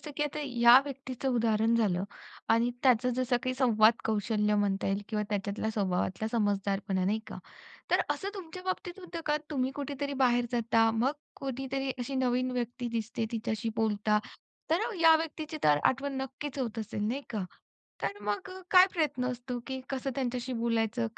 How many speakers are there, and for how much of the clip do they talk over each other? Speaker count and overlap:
one, no overlap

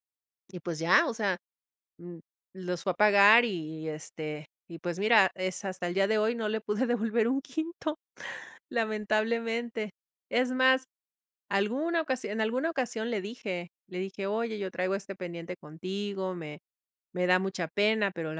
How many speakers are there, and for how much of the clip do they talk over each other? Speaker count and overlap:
one, no overlap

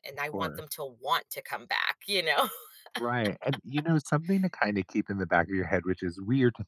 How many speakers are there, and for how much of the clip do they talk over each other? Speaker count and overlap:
two, about 5%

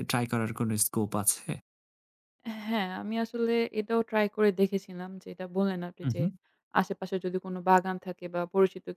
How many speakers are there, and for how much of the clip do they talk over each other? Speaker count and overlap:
two, about 3%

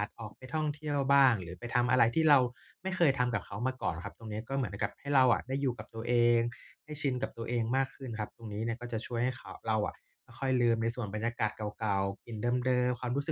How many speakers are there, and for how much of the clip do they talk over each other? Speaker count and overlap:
one, no overlap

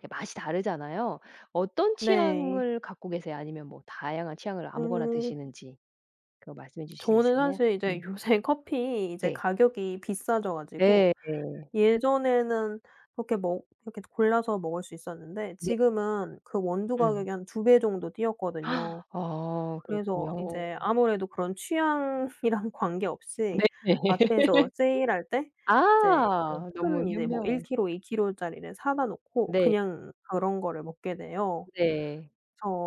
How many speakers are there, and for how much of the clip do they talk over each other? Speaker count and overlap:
two, about 17%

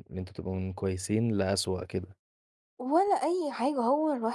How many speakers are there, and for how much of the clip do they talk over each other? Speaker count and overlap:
two, no overlap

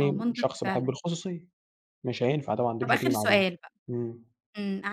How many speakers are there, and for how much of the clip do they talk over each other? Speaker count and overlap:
two, about 30%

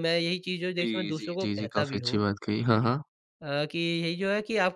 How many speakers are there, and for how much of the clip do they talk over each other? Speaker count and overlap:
two, about 30%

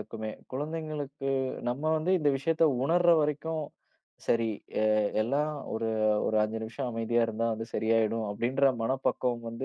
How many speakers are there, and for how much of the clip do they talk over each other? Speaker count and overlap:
one, no overlap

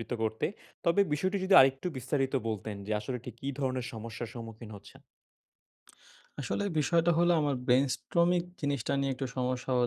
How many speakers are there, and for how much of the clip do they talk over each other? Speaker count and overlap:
two, no overlap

